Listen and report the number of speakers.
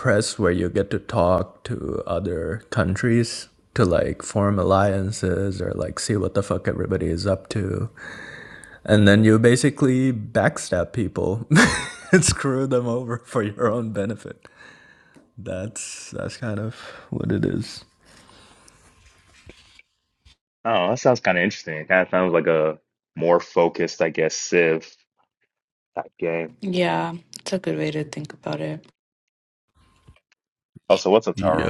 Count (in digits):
3